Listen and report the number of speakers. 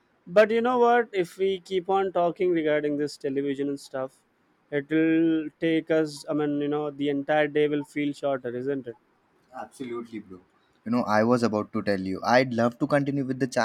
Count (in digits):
2